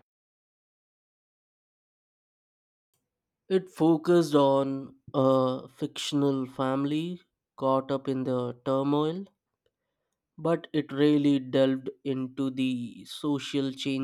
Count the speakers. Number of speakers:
1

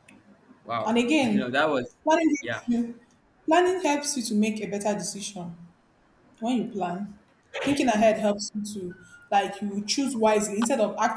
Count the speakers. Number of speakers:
2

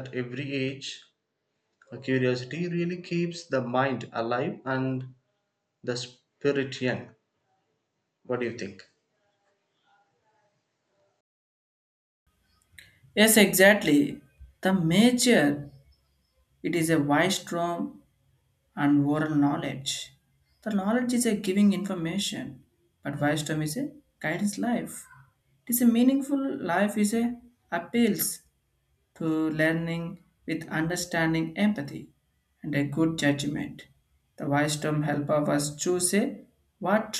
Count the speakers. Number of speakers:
2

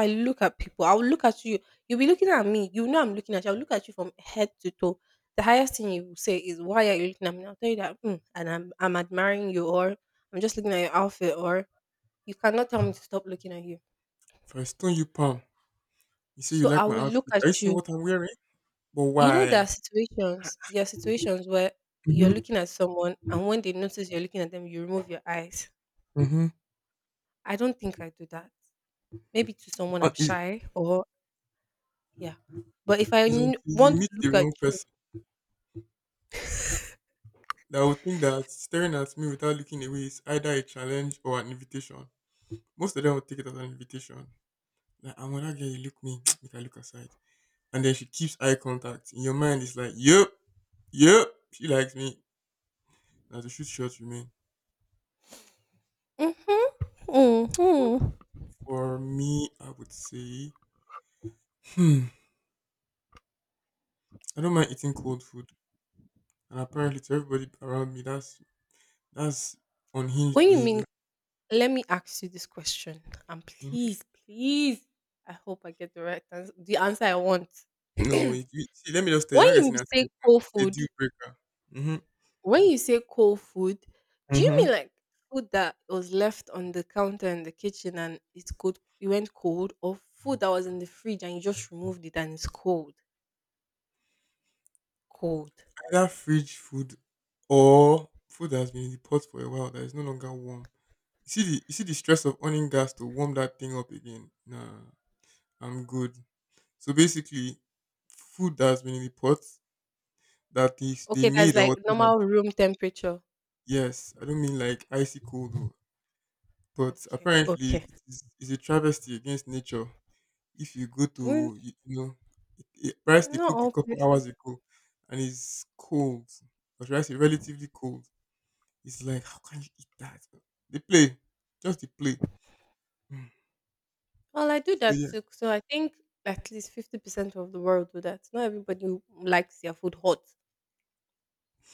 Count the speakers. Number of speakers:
2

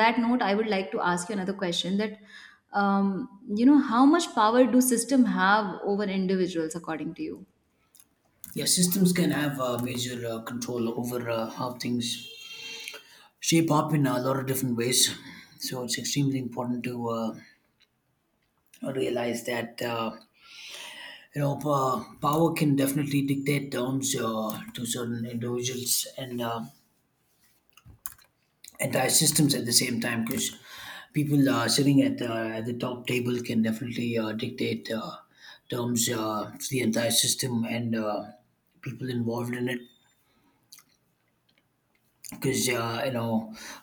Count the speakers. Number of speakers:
2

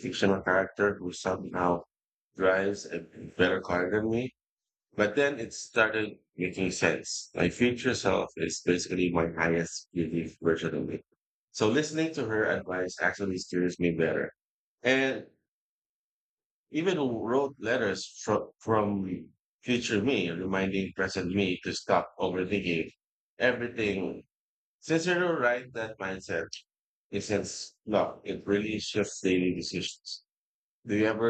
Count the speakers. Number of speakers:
1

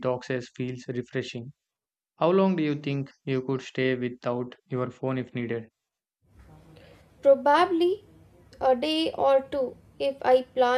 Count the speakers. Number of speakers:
2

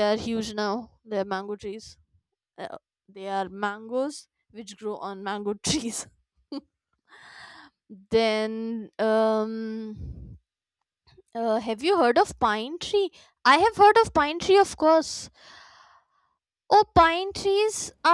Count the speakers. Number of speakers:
1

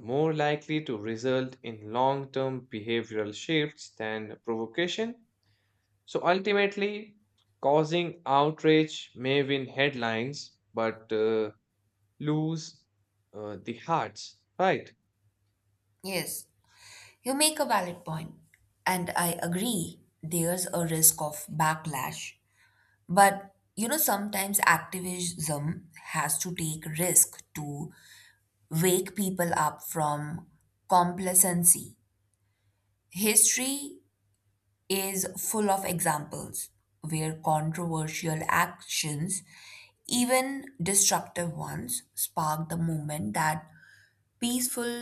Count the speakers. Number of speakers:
2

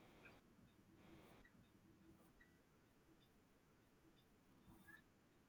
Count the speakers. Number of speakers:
0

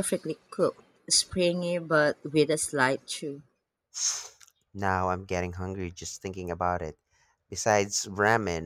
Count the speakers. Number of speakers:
2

